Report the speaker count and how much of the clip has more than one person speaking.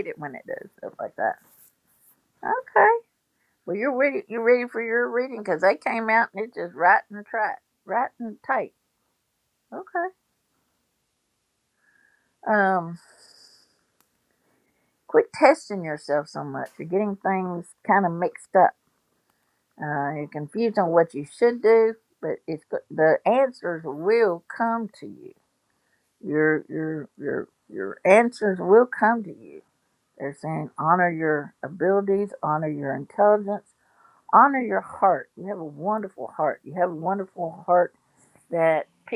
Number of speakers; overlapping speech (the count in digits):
1, no overlap